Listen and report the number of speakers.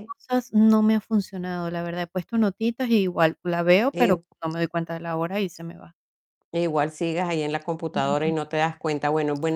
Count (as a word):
two